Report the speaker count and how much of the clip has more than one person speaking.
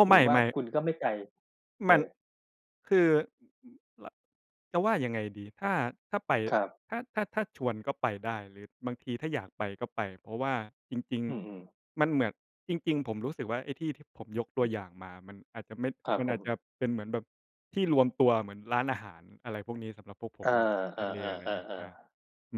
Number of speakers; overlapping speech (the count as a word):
two, about 6%